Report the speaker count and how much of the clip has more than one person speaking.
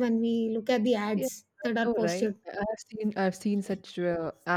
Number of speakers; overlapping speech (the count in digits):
2, about 17%